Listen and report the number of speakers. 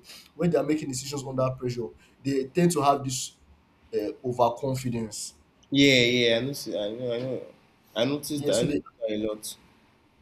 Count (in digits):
2